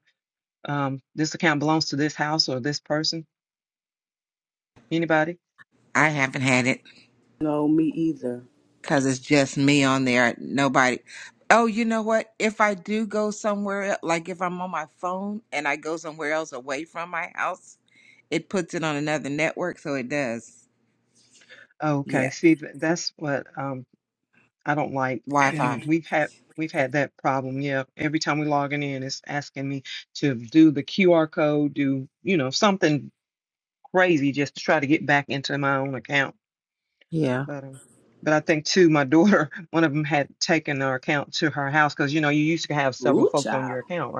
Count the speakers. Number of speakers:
3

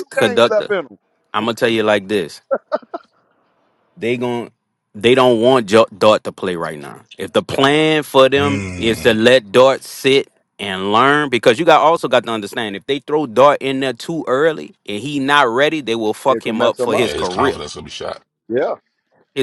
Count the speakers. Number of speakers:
3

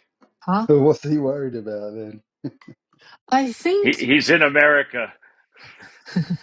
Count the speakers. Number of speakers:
3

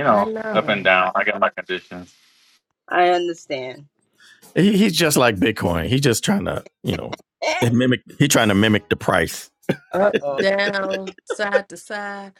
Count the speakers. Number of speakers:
4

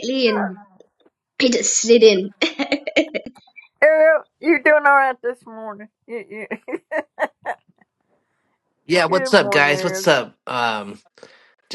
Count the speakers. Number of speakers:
3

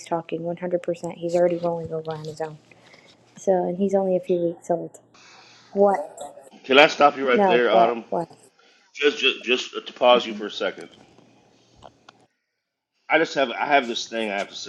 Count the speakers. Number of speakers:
2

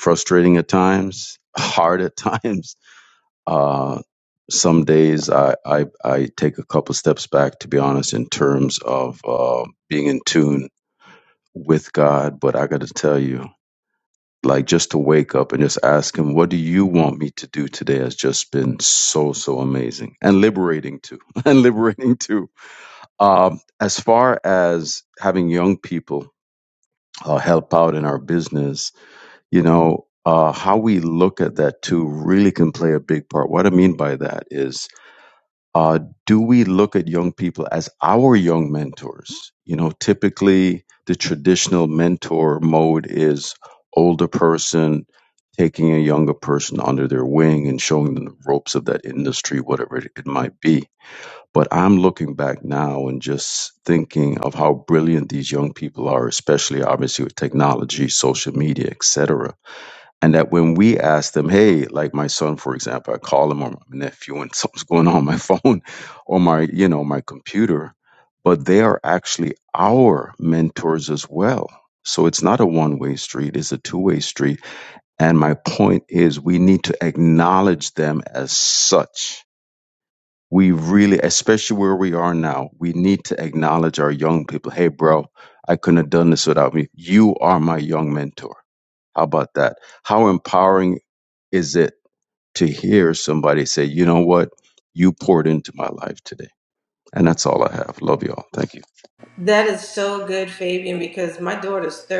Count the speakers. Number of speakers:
2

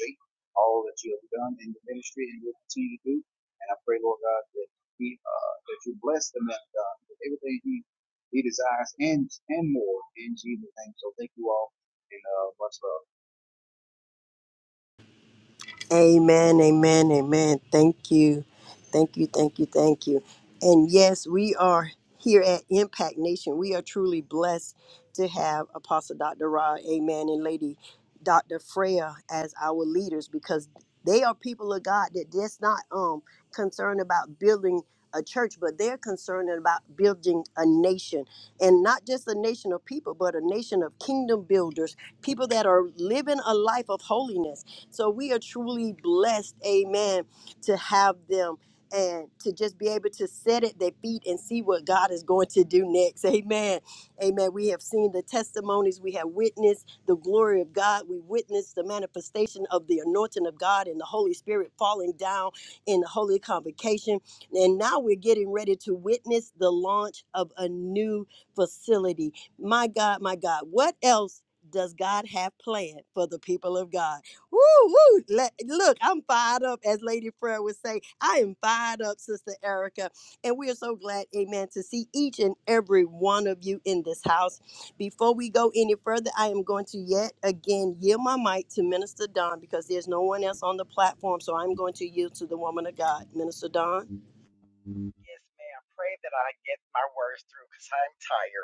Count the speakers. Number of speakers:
3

